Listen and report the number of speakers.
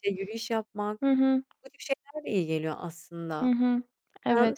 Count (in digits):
2